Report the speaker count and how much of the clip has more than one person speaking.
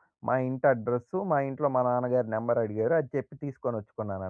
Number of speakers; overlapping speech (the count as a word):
one, no overlap